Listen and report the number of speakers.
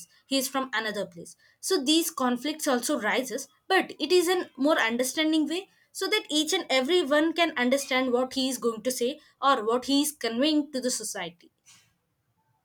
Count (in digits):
1